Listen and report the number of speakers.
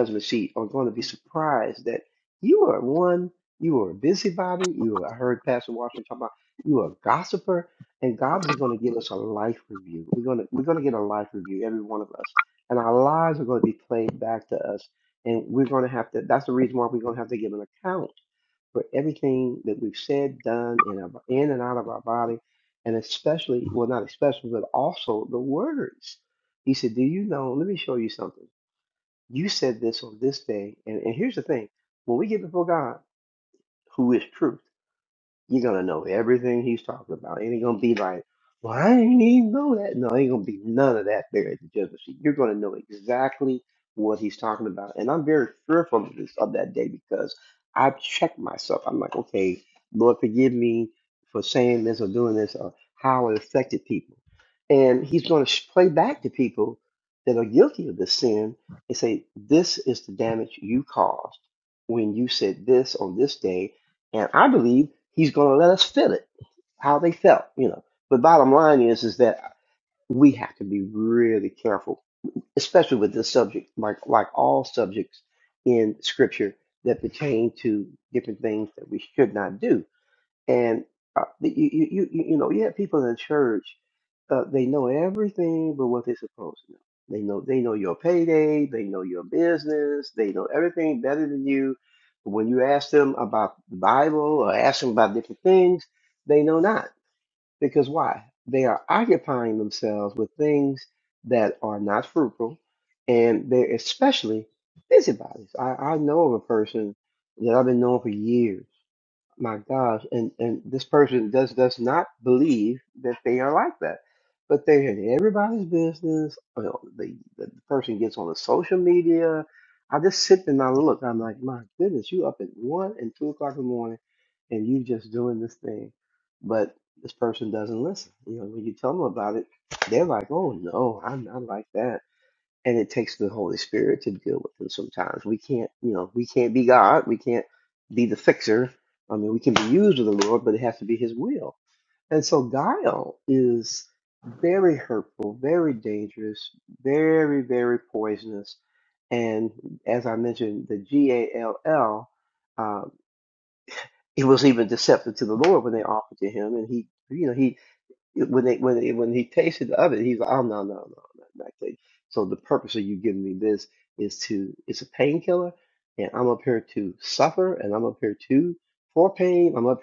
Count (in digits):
1